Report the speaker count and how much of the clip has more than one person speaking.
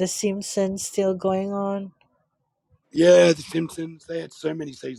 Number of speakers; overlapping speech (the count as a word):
two, no overlap